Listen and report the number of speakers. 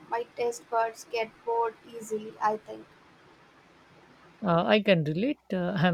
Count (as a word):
two